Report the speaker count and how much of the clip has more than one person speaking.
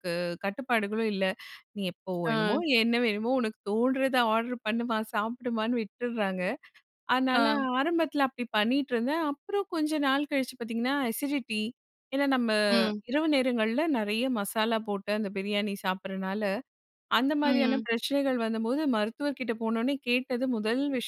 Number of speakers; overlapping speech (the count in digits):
2, about 5%